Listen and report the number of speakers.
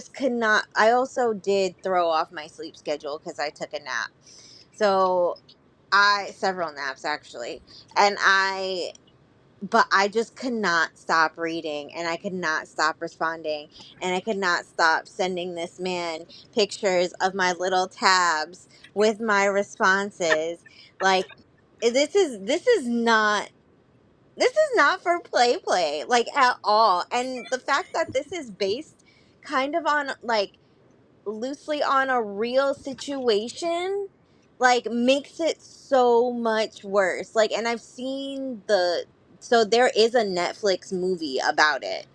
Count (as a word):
one